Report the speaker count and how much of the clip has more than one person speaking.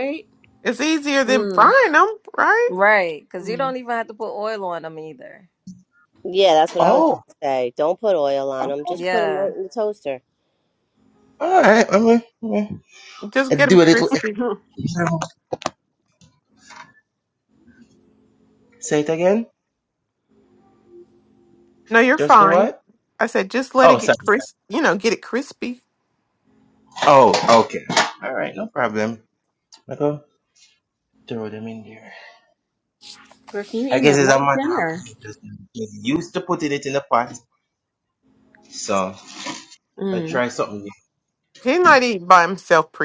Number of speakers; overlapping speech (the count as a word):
five, about 11%